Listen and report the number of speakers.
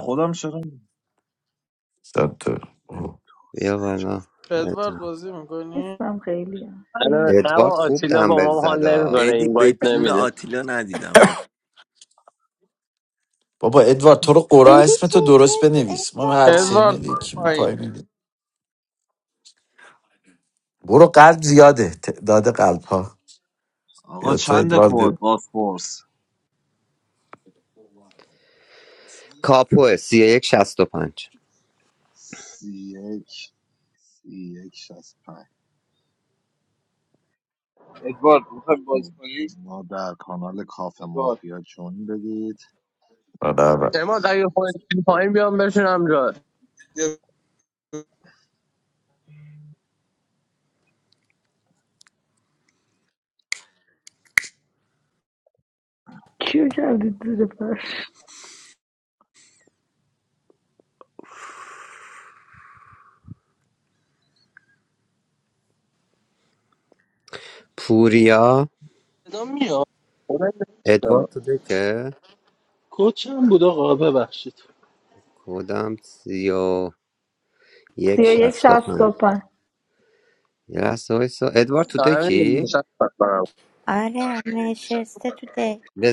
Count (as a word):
ten